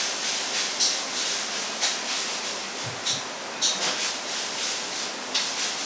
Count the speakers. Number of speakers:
0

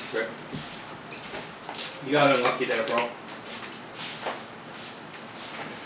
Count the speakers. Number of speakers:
1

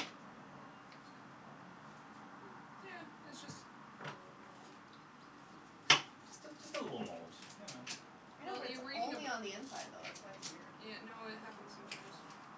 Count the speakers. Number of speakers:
3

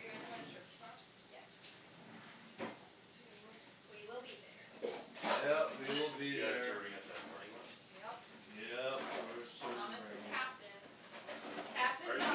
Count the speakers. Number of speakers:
4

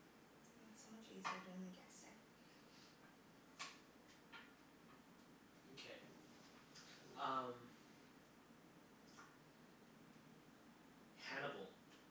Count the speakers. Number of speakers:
2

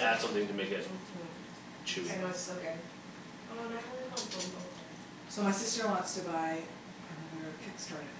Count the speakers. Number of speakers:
3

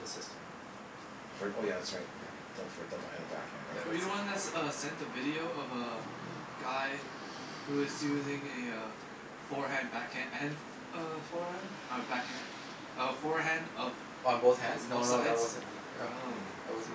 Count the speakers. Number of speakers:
3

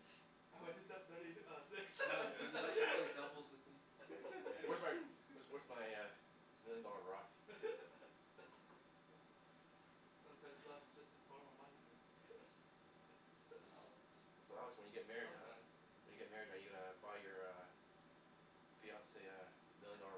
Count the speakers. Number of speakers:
3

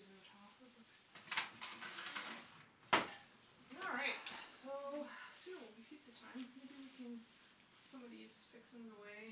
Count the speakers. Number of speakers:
1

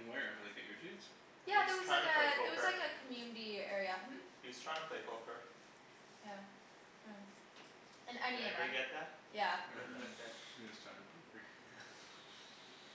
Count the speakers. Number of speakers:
3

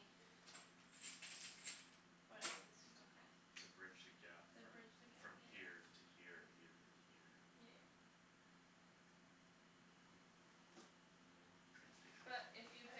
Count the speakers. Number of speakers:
3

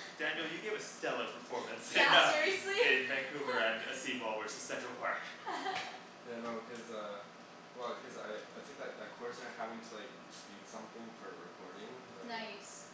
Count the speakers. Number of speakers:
3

